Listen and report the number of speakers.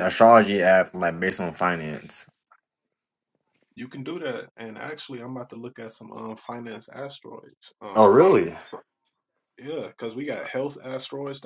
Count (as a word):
two